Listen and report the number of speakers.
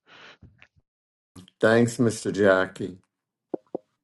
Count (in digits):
1